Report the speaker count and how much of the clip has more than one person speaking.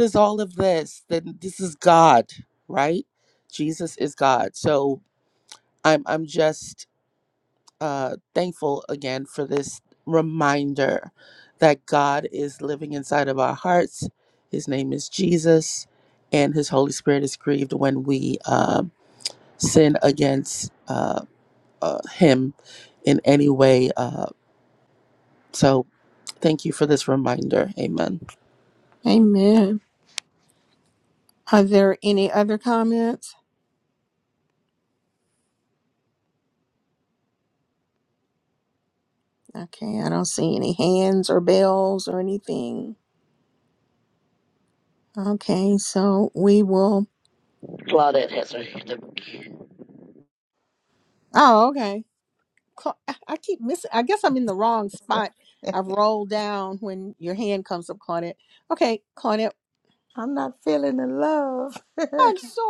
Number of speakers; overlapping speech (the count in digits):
4, no overlap